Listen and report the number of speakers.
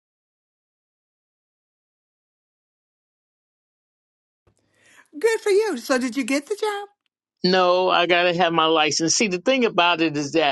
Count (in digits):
2